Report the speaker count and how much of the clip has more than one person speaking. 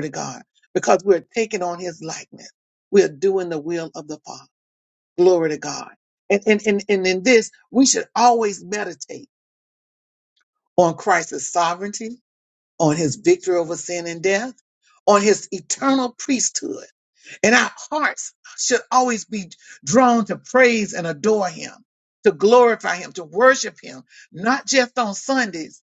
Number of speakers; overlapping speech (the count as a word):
one, no overlap